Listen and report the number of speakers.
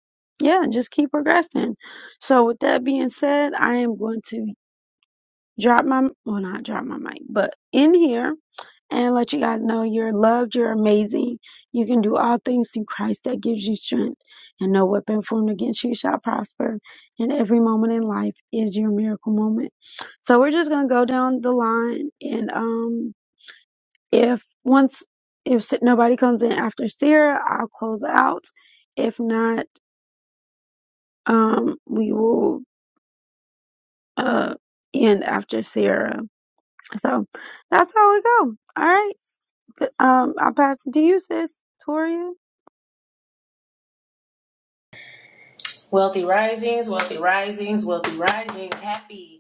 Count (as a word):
two